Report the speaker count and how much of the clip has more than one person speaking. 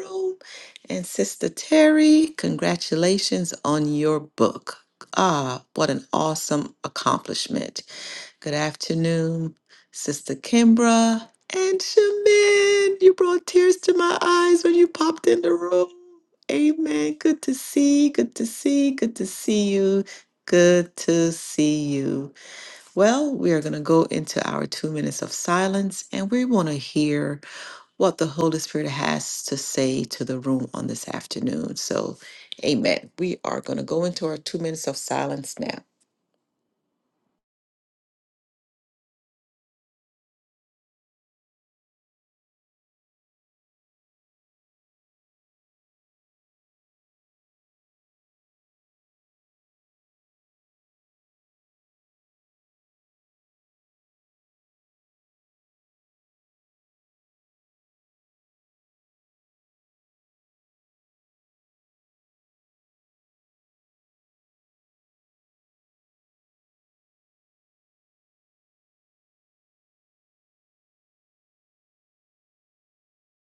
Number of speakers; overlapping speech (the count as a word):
one, no overlap